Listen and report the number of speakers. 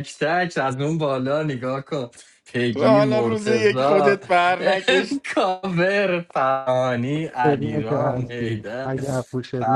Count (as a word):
three